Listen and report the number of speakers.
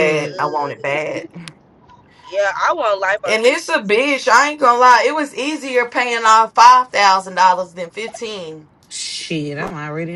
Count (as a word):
three